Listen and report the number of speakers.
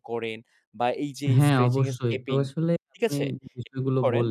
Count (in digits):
2